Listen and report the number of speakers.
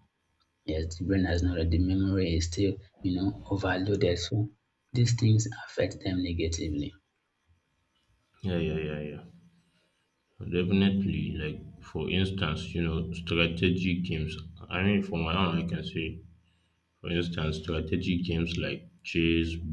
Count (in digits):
2